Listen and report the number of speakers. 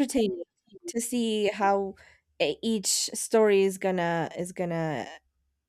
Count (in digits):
1